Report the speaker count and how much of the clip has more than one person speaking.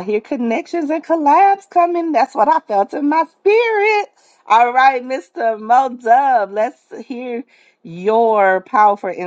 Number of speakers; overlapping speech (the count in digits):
1, no overlap